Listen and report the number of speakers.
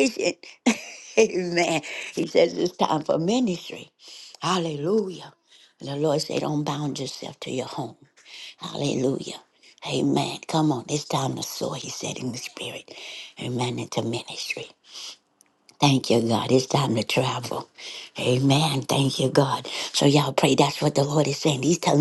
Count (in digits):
1